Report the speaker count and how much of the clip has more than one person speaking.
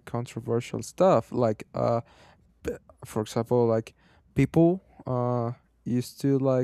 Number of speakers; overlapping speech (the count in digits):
1, no overlap